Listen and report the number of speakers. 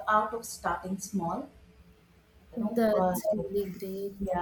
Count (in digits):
2